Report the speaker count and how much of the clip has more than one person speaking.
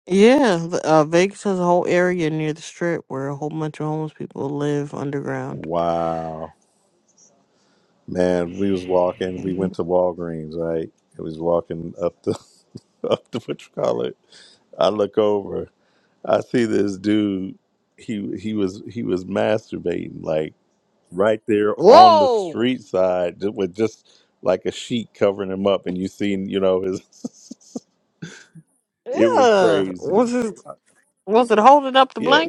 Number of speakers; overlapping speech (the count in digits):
2, about 9%